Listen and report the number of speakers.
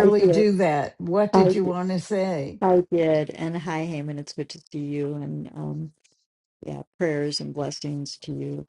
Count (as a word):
two